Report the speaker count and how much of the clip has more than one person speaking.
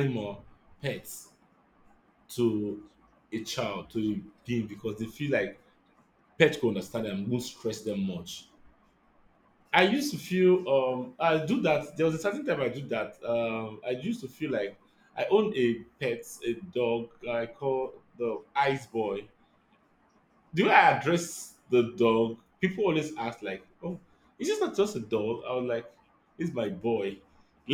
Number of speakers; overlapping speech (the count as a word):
one, no overlap